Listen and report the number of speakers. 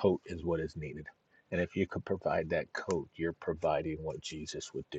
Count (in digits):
1